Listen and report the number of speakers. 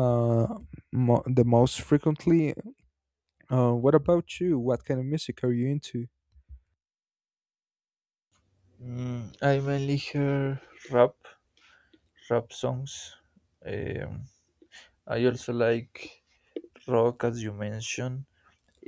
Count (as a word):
two